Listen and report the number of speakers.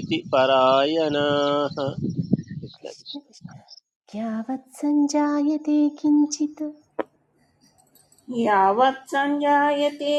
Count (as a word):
three